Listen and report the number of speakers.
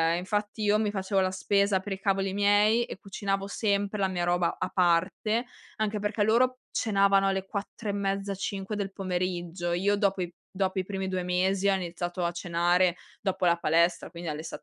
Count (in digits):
1